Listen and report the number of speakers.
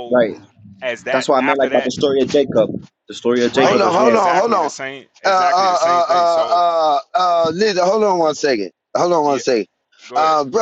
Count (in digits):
3